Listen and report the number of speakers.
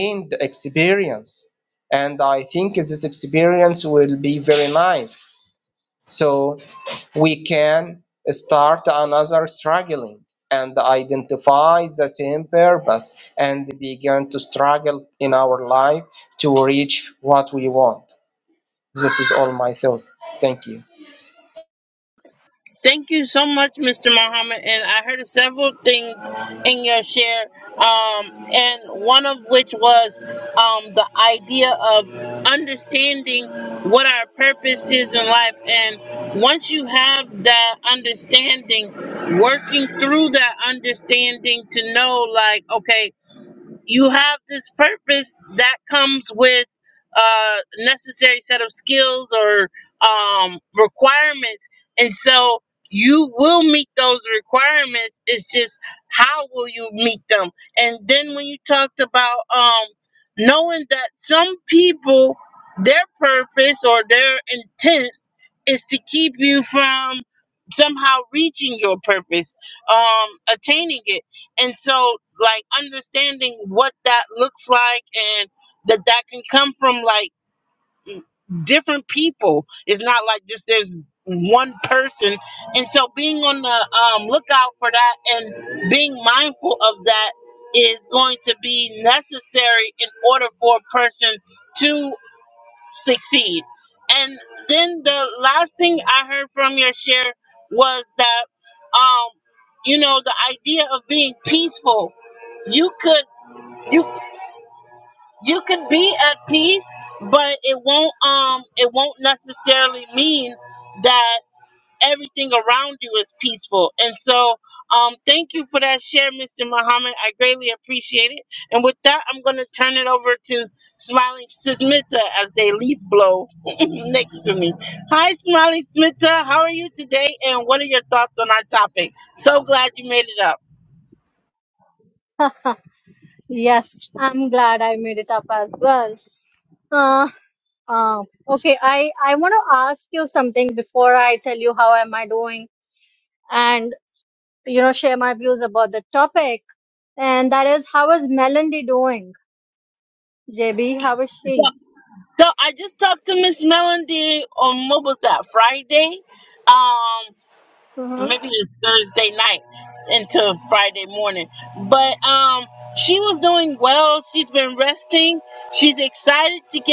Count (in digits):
3